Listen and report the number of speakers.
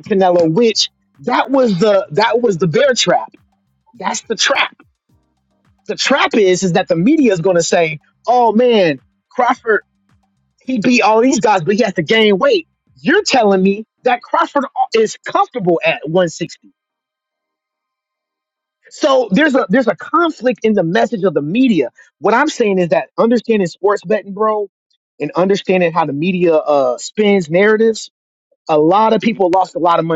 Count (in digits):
1